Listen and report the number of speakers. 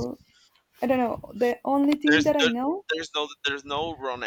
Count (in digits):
2